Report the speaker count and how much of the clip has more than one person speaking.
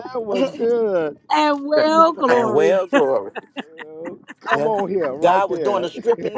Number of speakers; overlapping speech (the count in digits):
3, about 22%